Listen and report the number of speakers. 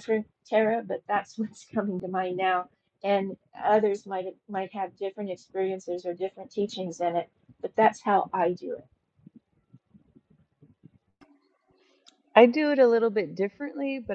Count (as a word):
two